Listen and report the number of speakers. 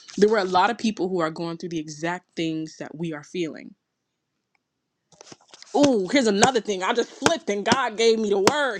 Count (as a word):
one